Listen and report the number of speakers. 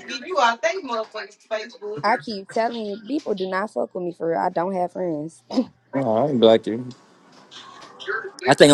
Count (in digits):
3